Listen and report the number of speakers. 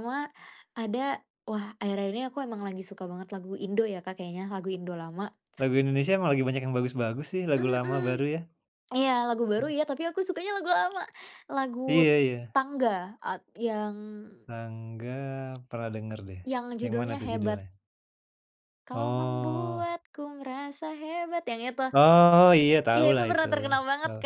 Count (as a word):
two